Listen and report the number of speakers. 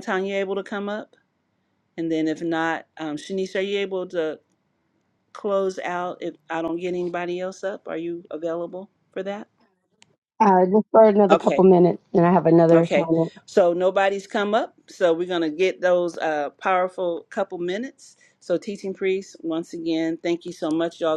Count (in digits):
2